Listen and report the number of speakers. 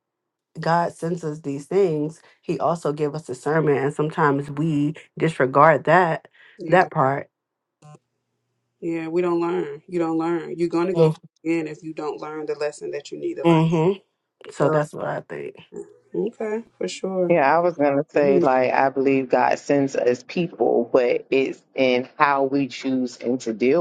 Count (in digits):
3